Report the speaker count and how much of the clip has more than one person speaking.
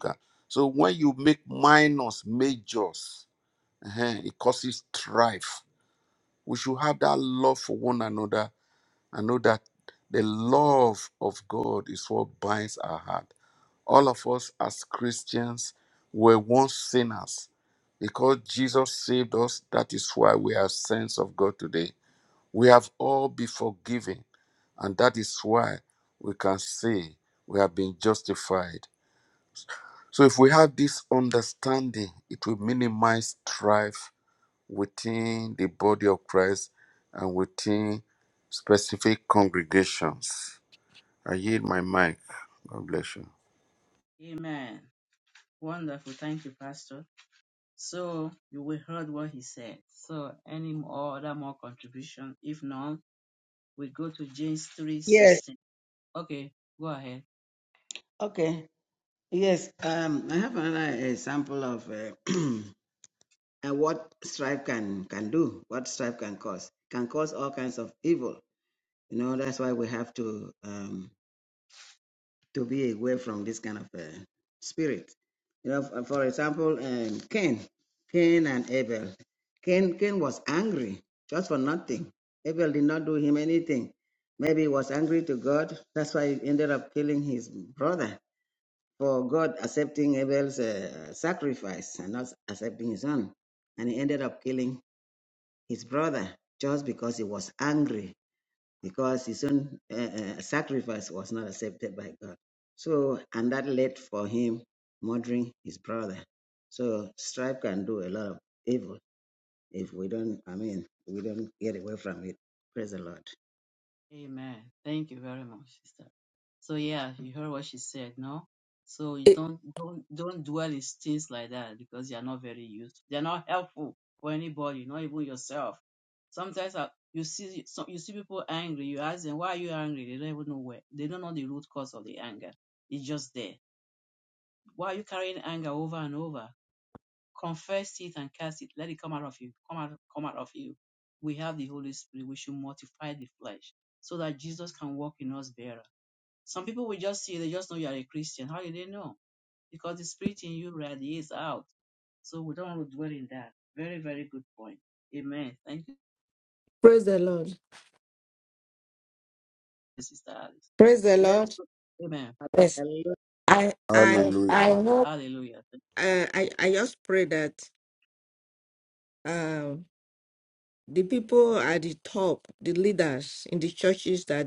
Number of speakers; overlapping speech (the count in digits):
4, about 1%